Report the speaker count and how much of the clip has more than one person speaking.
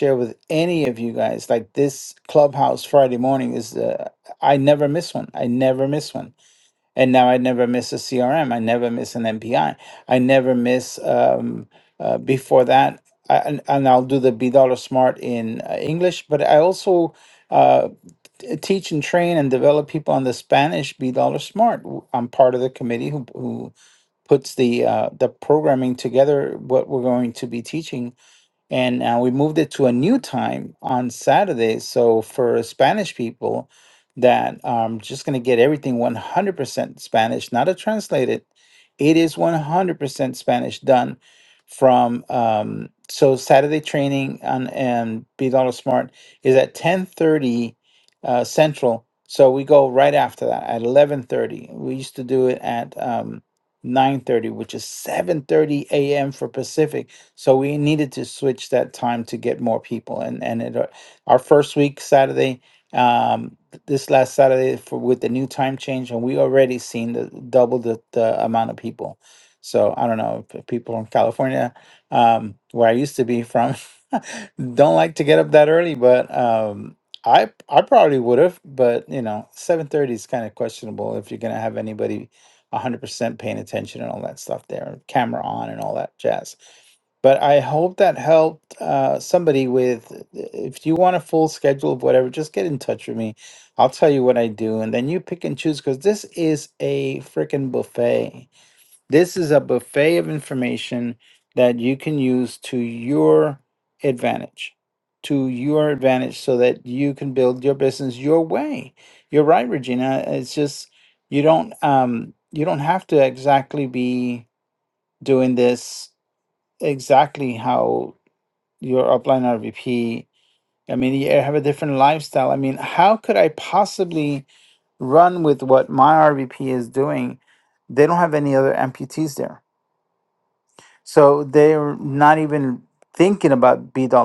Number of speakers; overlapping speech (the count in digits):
1, no overlap